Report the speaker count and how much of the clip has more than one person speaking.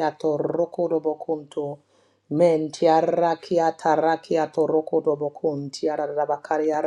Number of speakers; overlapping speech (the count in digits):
1, no overlap